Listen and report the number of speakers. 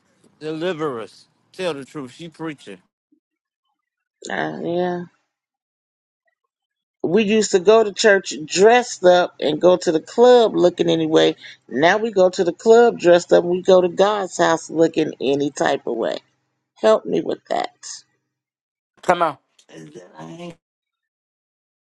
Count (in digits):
3